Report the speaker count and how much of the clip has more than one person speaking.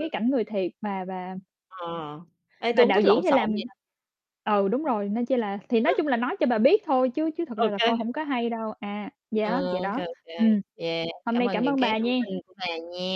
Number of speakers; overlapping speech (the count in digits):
2, about 22%